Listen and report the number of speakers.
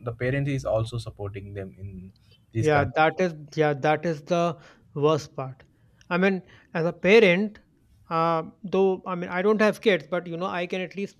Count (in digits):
2